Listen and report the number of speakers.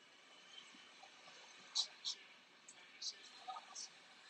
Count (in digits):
0